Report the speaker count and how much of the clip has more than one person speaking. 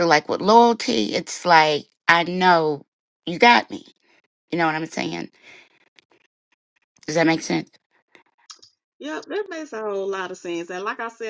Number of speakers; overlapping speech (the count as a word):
two, no overlap